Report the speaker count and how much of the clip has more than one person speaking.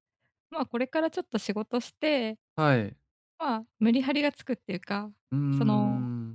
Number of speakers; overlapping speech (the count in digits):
2, about 9%